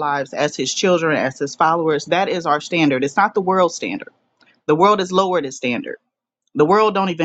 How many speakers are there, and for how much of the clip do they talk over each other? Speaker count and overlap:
one, no overlap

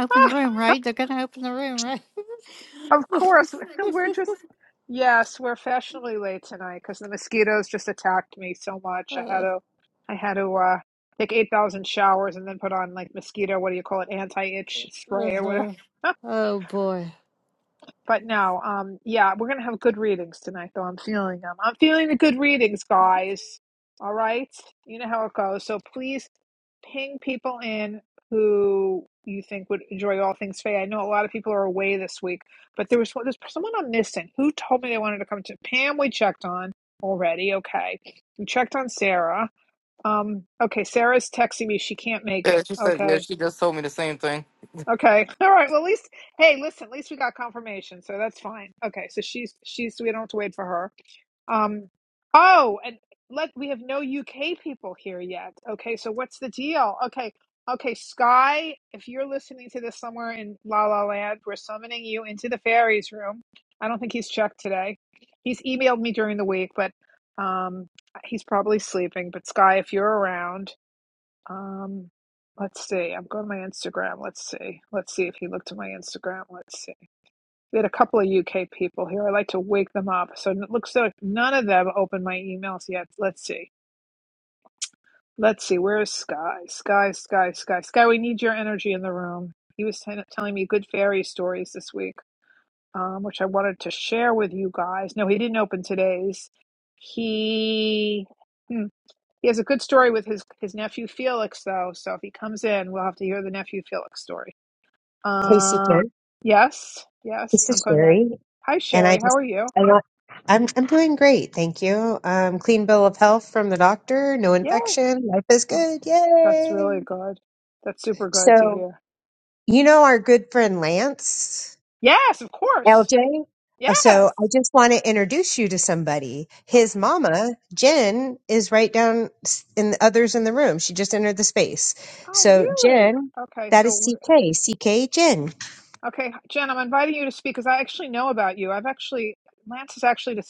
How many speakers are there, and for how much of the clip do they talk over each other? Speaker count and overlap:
four, about 5%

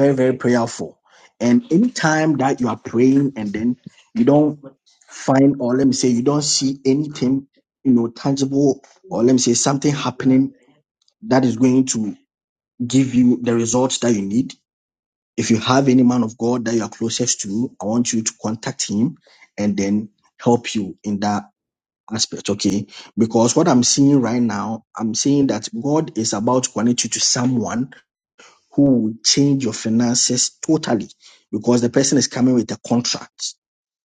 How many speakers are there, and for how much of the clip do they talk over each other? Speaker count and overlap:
one, no overlap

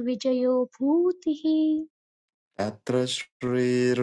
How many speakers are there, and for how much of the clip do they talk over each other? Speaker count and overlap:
two, no overlap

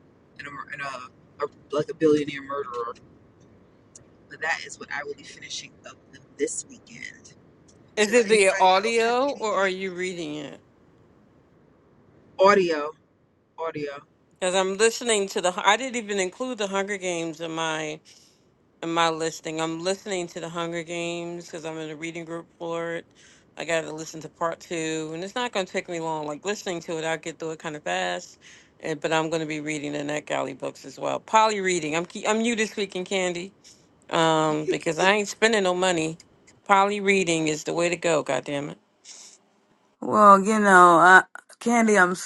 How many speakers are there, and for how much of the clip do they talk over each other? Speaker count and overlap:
three, about 4%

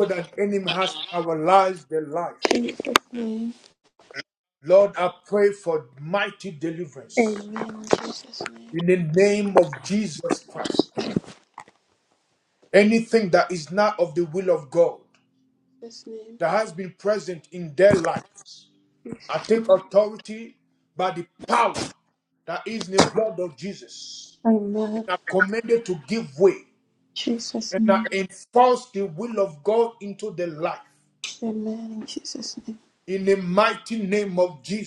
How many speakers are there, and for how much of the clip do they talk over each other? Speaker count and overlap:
two, about 3%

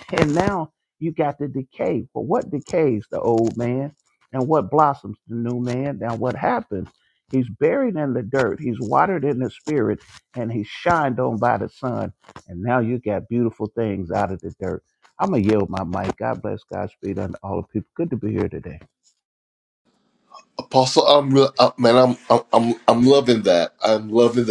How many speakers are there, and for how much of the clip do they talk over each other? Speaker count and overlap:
two, no overlap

